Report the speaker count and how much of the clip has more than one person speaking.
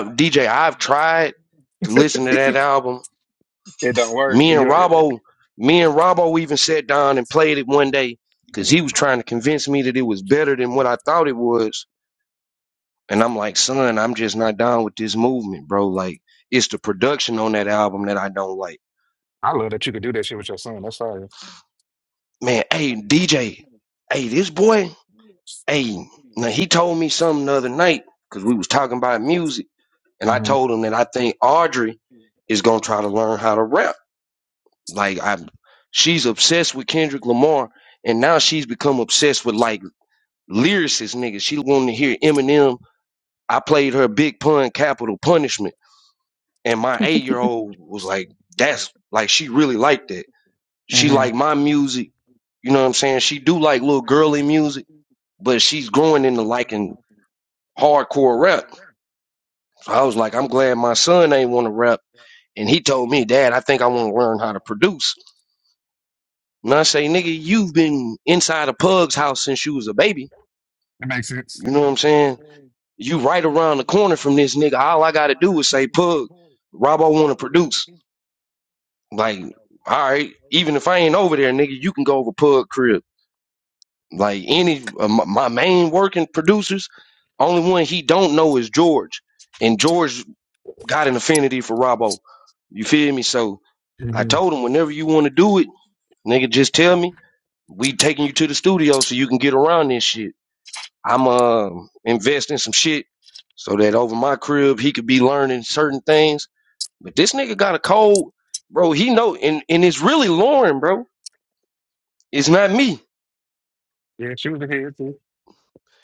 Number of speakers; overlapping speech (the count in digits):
2, about 3%